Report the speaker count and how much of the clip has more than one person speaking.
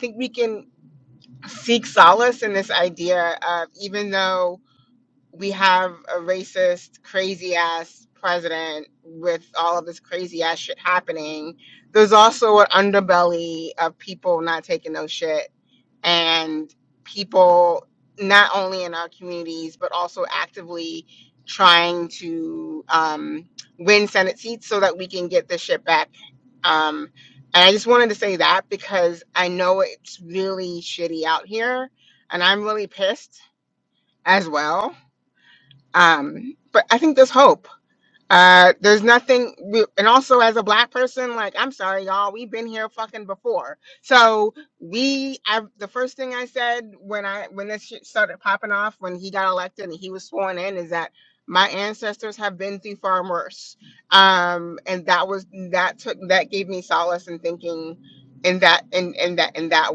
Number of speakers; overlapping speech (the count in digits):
1, no overlap